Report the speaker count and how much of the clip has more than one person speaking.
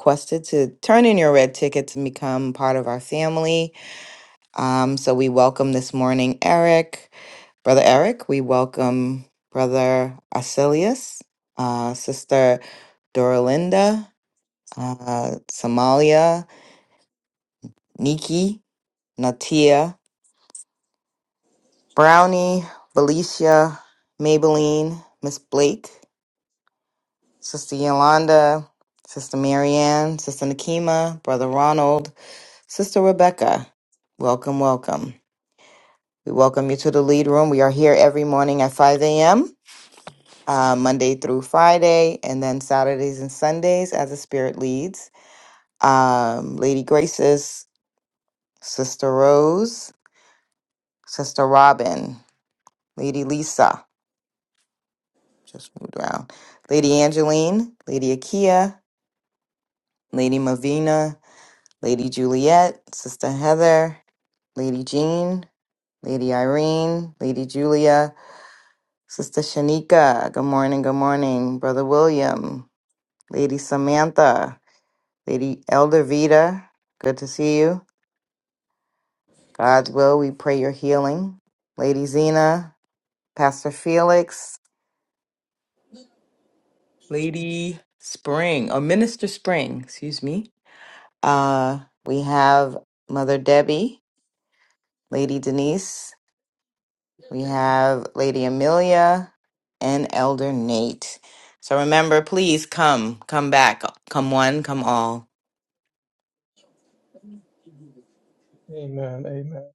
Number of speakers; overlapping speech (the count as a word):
two, no overlap